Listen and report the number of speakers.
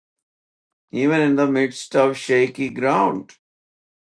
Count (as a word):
one